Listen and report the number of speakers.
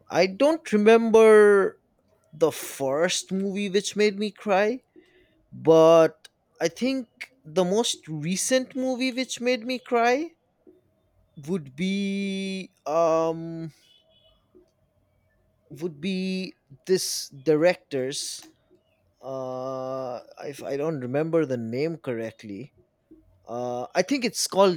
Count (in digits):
1